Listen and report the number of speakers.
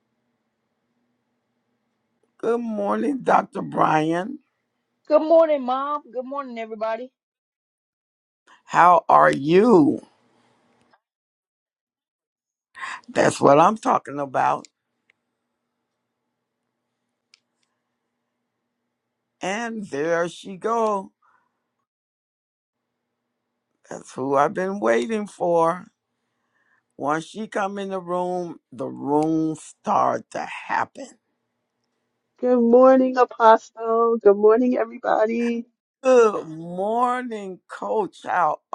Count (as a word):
three